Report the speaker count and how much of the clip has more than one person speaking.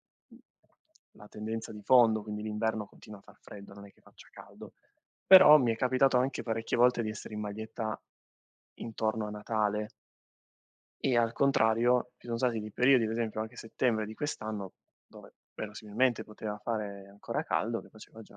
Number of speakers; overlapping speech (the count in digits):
1, no overlap